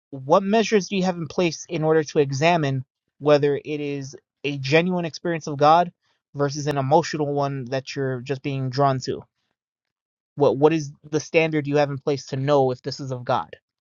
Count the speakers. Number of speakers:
one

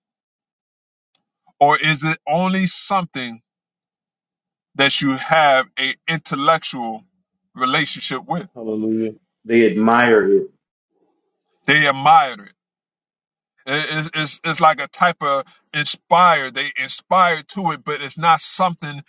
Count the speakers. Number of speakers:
two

